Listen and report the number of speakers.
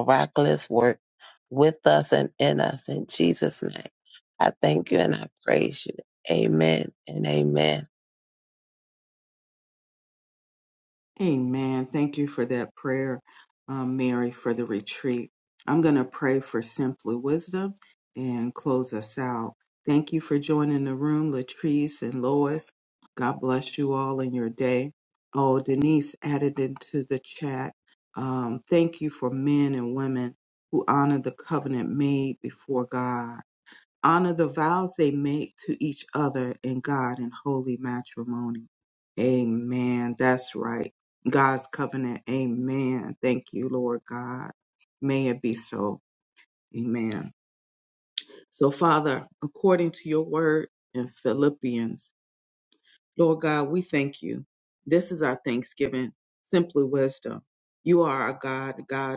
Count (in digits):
2